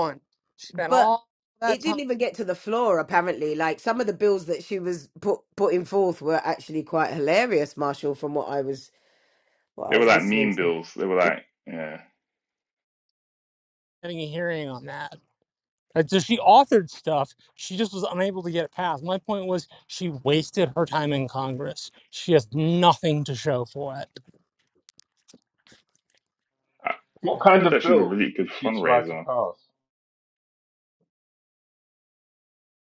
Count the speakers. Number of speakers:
4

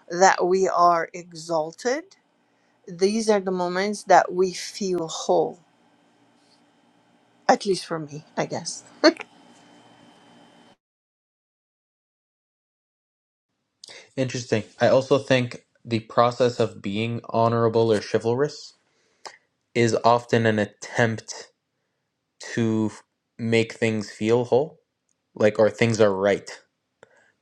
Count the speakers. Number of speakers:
2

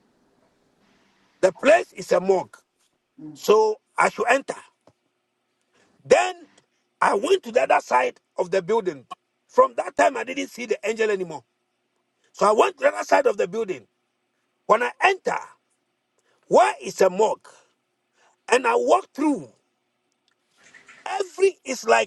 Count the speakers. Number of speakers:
1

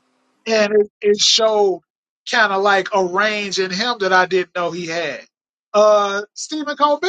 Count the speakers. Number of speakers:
1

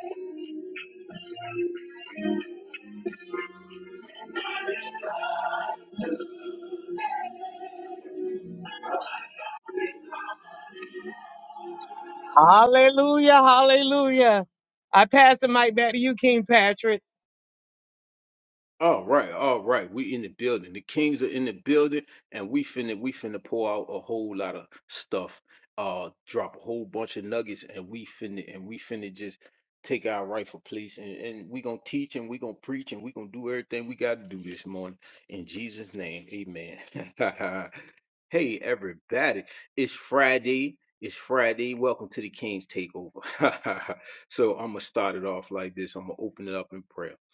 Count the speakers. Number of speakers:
2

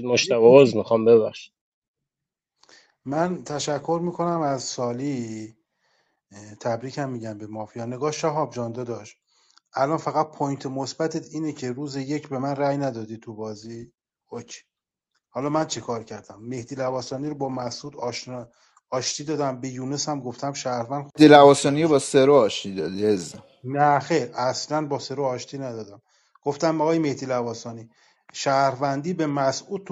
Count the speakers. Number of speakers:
3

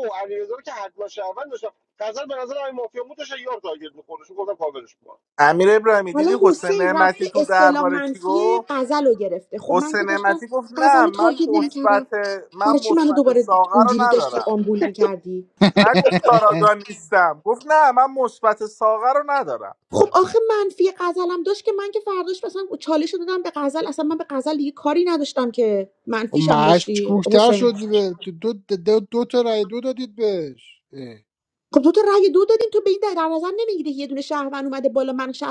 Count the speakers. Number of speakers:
4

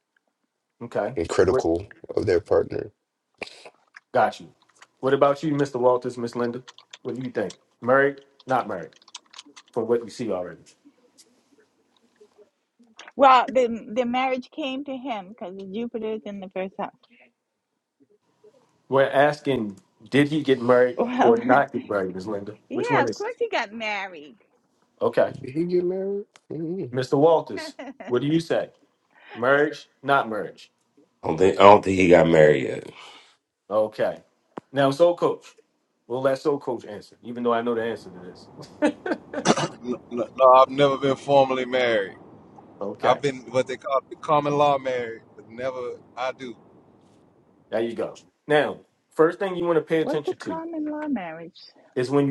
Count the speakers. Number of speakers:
5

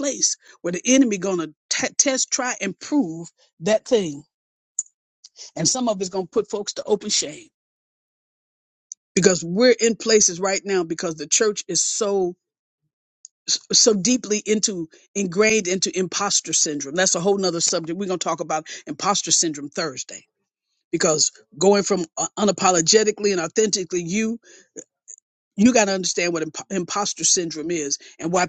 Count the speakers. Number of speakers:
1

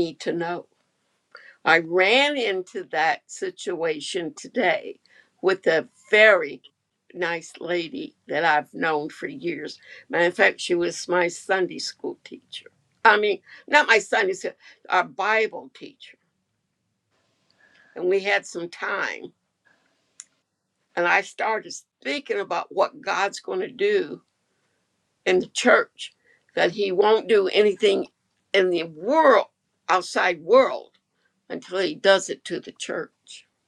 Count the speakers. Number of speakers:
1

